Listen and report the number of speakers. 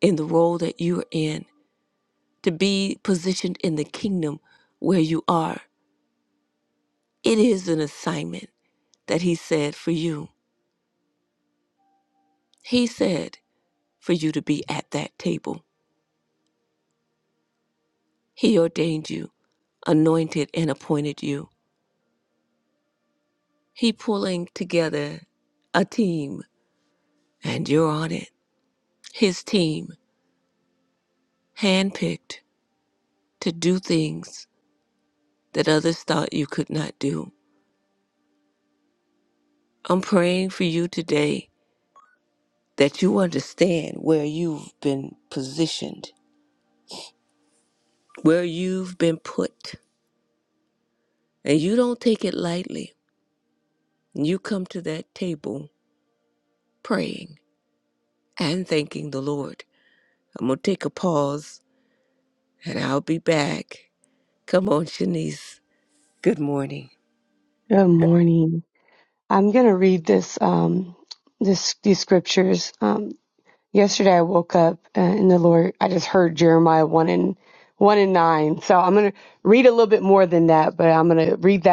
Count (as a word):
two